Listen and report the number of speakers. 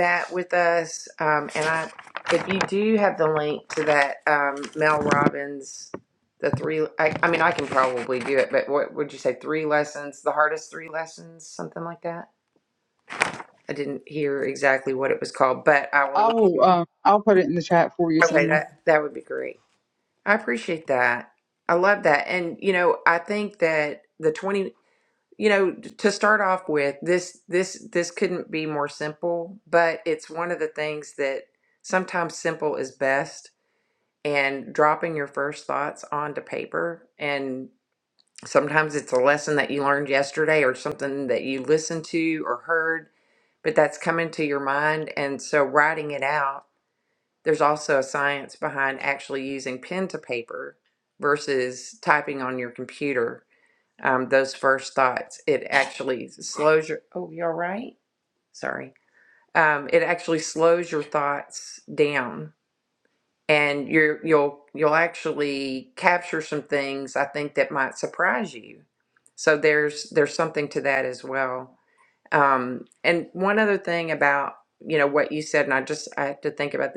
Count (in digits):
2